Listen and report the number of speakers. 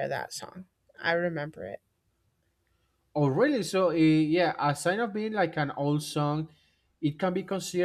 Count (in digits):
2